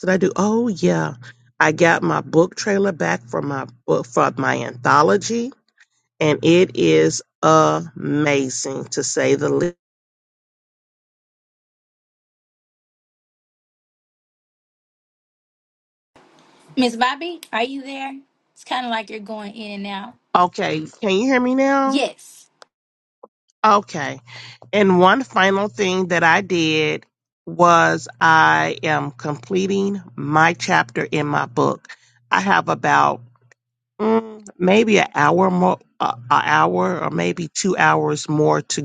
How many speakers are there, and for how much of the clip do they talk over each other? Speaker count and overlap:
2, under 1%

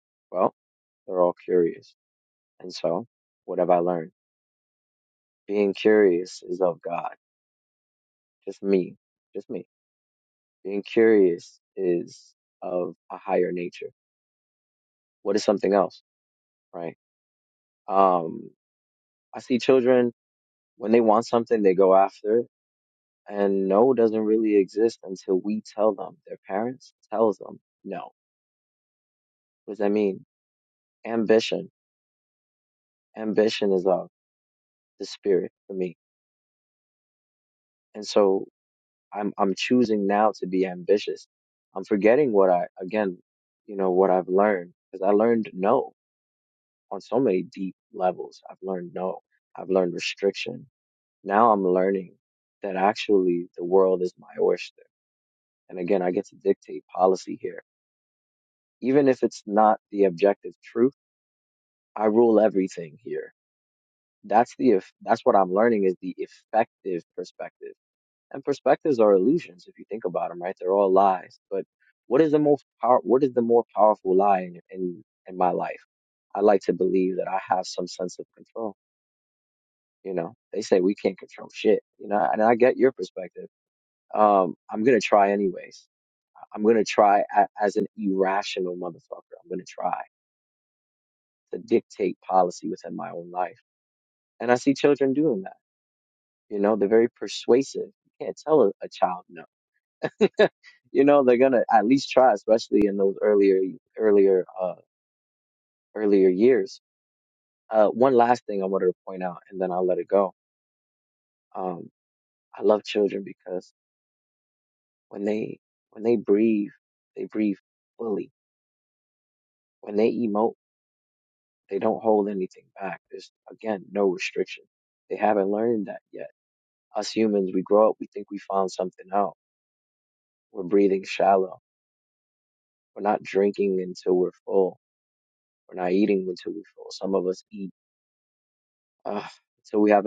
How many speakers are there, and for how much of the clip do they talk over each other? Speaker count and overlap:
1, no overlap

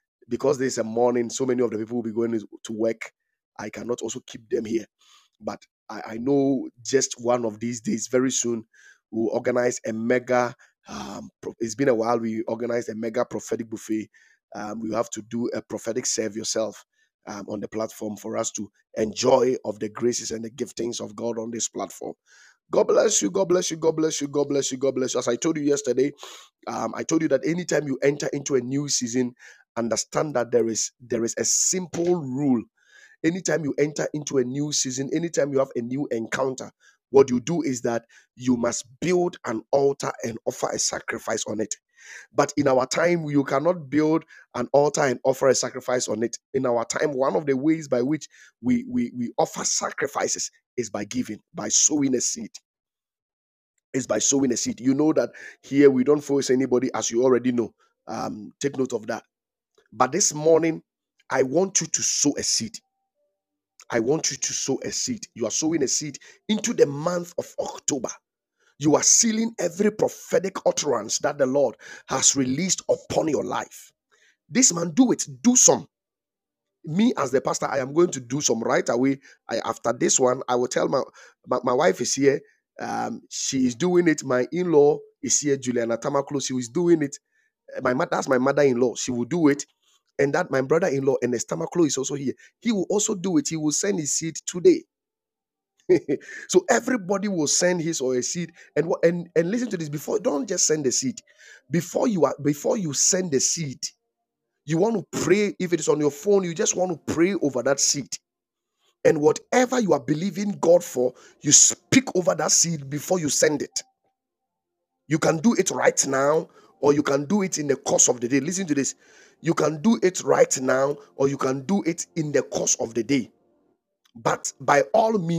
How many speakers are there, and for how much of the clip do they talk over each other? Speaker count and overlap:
1, no overlap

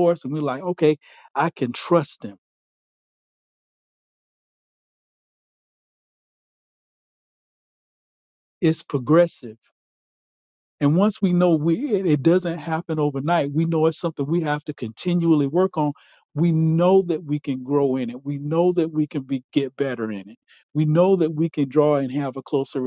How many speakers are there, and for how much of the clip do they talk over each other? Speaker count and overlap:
1, no overlap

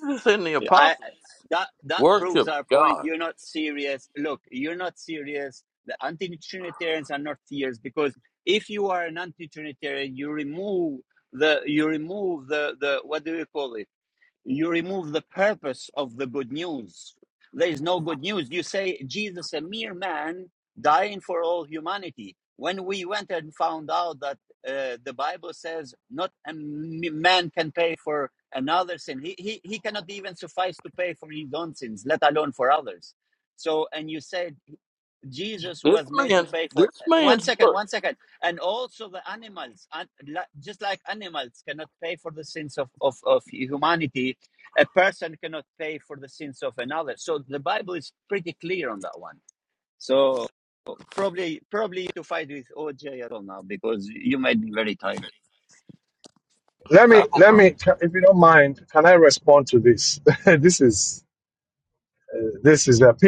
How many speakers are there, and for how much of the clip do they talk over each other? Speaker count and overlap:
3, about 6%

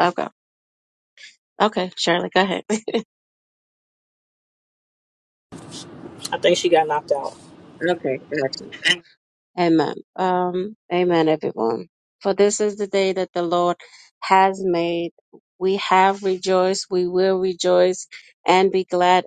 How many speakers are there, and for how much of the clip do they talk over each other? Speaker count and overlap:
2, no overlap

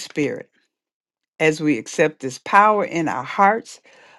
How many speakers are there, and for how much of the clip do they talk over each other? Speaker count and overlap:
1, no overlap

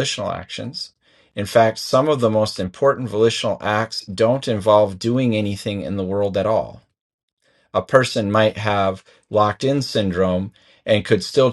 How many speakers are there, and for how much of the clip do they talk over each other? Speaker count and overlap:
1, no overlap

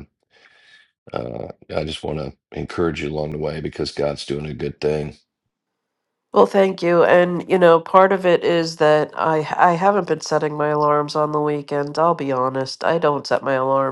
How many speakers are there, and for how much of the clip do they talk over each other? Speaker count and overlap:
2, no overlap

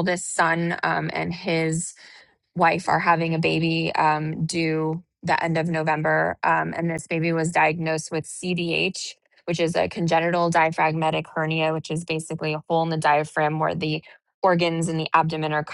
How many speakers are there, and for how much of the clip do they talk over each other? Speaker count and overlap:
1, no overlap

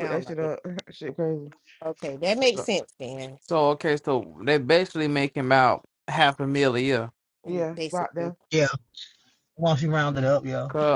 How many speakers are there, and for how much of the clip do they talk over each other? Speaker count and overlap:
4, about 13%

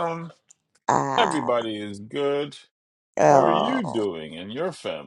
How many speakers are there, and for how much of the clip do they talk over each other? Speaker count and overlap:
2, about 21%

